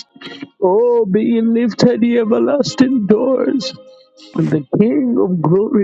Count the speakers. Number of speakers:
1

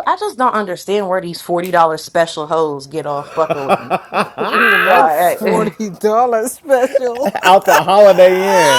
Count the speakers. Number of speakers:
3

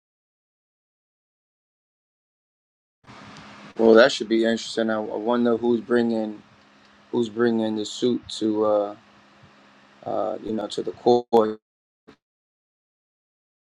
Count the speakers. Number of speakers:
1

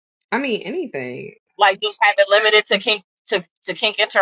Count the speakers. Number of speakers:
2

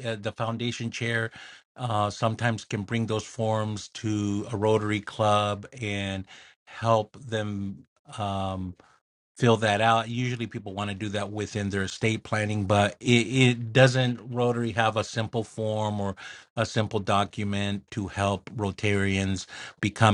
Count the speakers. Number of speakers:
1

